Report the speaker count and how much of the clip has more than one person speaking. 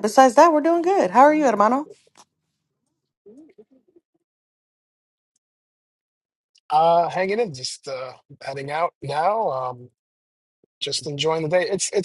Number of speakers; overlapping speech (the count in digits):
2, under 1%